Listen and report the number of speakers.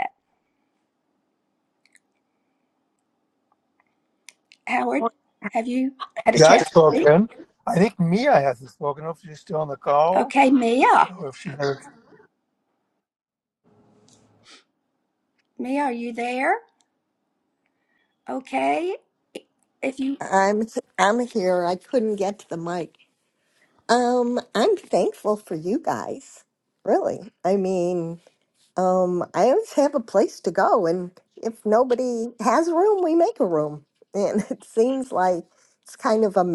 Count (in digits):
3